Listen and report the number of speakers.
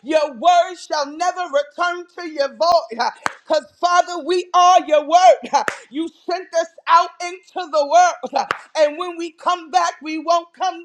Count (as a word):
one